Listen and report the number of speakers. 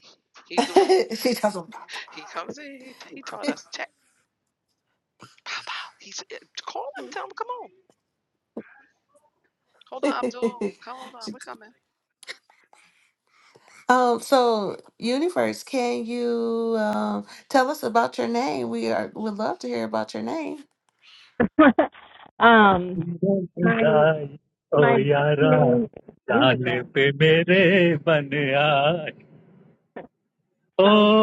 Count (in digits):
4